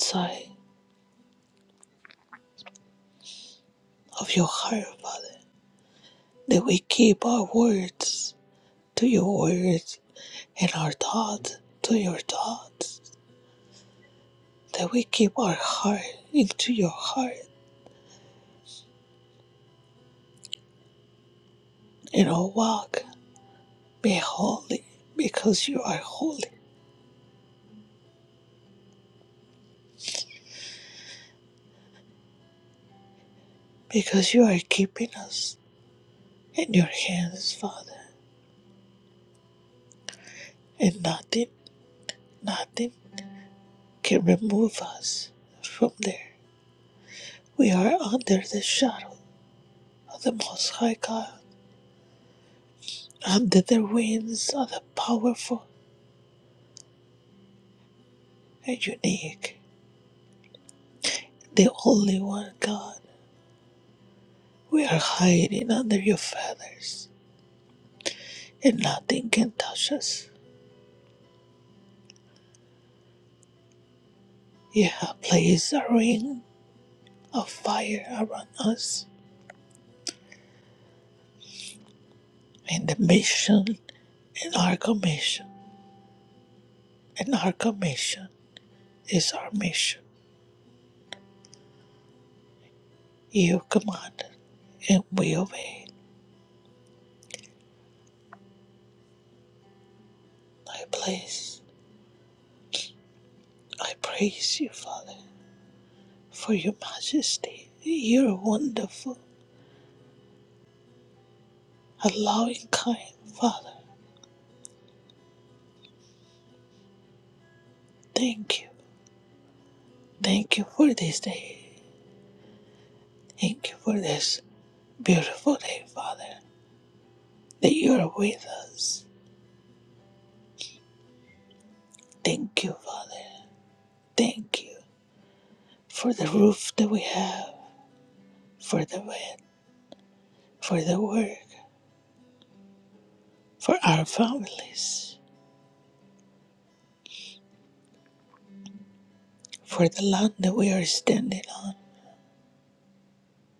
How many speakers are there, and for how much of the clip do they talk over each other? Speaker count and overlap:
one, no overlap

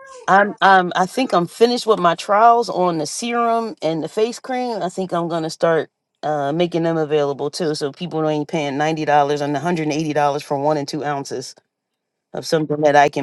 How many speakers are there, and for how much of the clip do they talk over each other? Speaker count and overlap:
one, no overlap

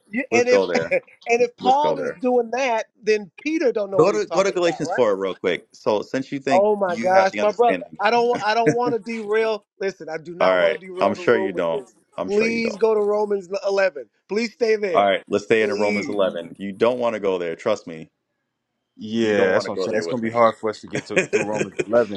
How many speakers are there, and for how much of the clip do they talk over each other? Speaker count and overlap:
three, about 34%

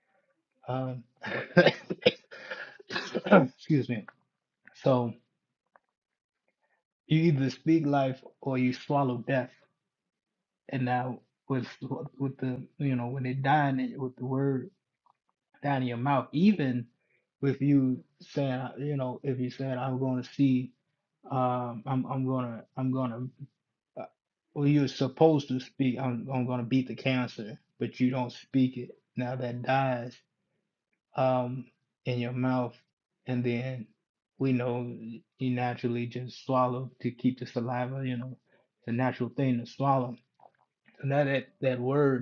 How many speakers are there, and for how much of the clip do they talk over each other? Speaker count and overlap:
one, no overlap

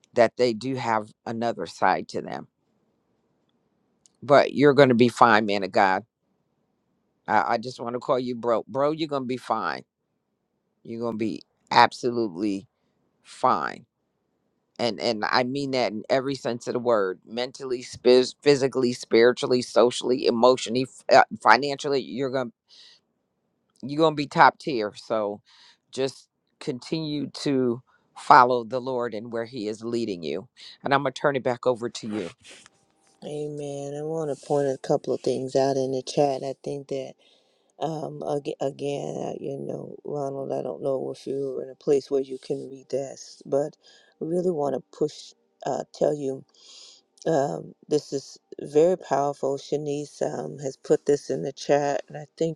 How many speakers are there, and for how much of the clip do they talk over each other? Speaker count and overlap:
two, no overlap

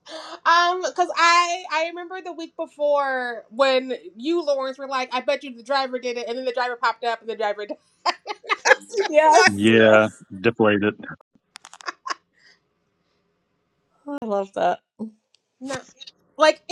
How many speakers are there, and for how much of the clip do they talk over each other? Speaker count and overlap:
three, about 6%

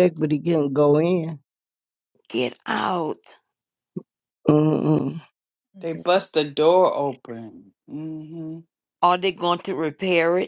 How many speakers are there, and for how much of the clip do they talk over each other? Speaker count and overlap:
three, no overlap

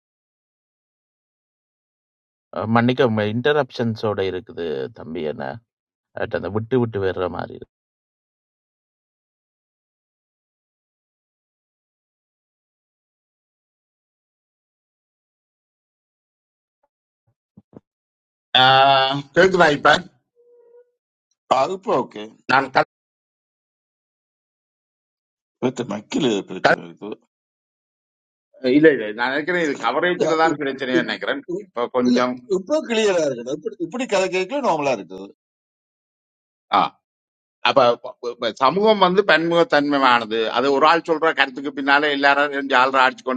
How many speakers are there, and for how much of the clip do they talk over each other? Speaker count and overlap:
three, about 2%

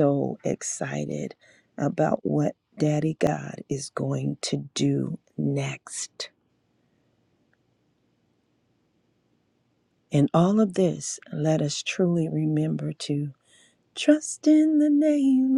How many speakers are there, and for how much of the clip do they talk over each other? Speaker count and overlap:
one, no overlap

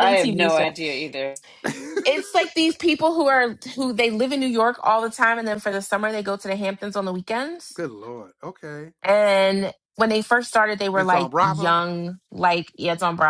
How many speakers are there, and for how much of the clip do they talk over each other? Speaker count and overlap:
three, about 15%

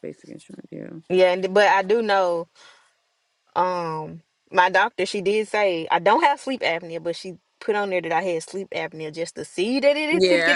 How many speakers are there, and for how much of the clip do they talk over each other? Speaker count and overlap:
two, about 4%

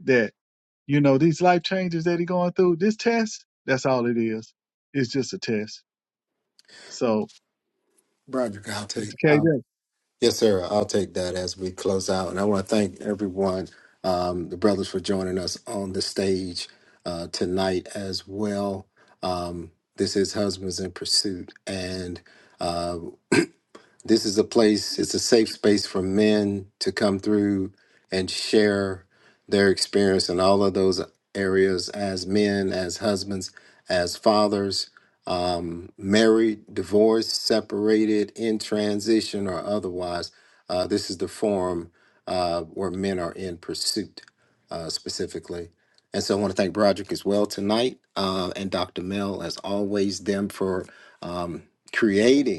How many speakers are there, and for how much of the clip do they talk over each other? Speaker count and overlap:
two, about 1%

